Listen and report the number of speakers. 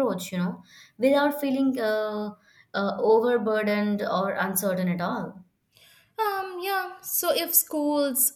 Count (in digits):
2